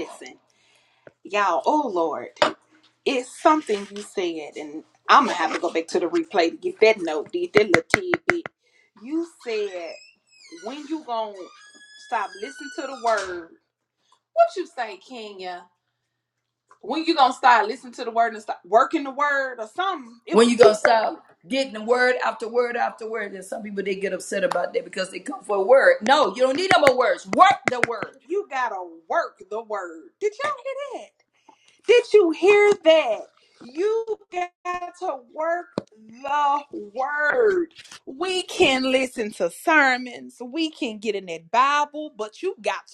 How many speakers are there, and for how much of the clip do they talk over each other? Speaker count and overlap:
two, about 1%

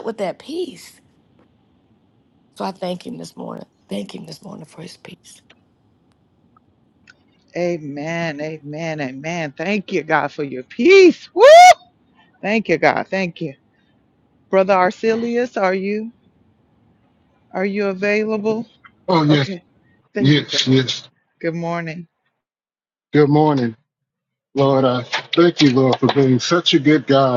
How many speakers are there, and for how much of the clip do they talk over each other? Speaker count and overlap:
three, about 2%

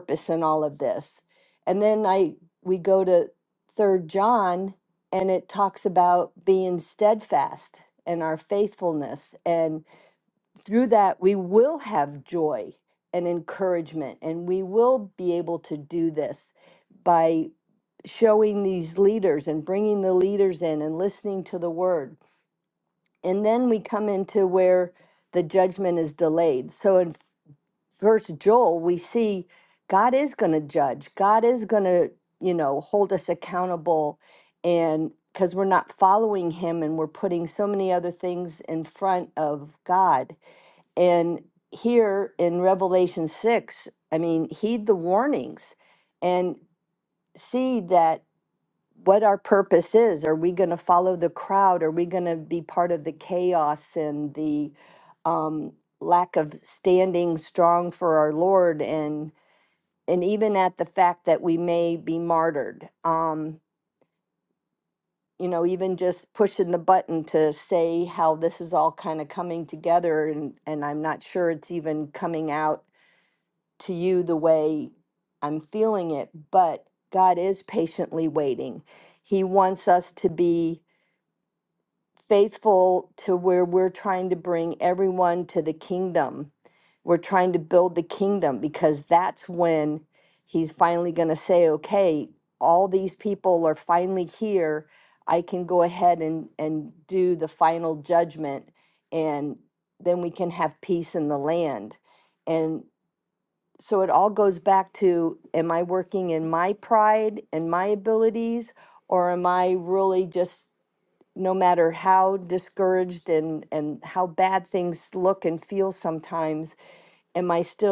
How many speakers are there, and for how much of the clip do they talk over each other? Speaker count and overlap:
one, no overlap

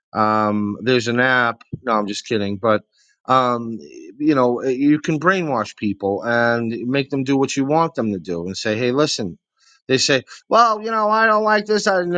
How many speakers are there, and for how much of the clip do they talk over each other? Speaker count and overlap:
one, no overlap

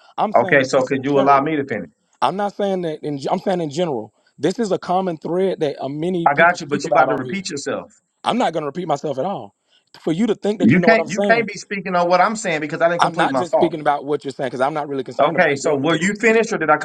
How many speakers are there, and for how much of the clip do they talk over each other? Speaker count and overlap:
two, about 30%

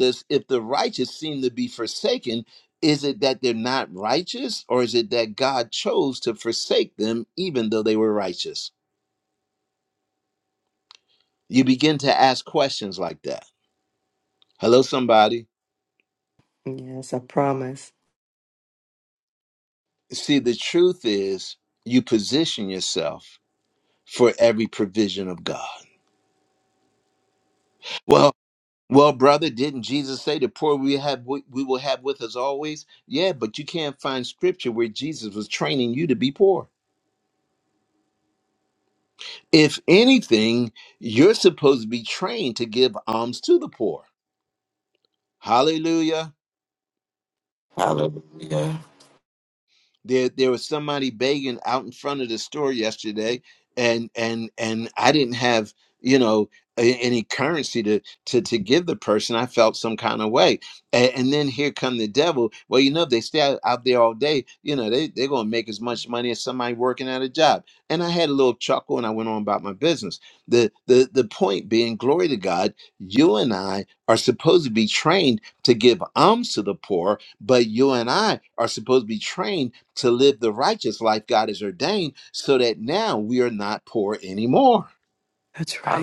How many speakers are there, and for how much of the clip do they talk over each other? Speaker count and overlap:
three, under 1%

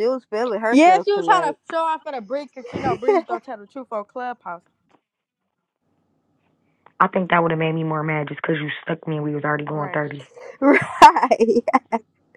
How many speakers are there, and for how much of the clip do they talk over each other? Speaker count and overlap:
three, about 9%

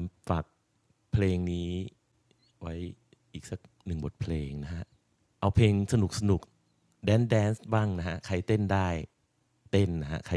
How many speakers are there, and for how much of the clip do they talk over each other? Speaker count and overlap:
one, no overlap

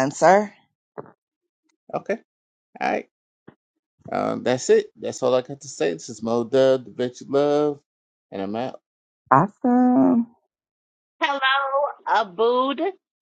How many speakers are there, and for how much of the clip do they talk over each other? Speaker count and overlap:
three, no overlap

